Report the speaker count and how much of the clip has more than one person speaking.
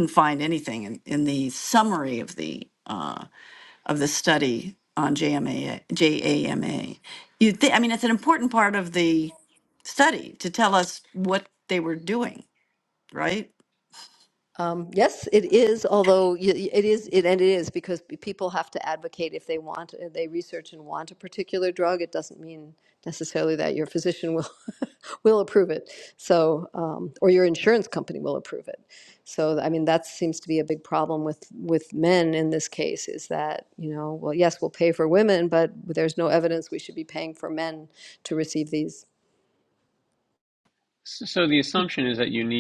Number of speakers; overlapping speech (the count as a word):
three, no overlap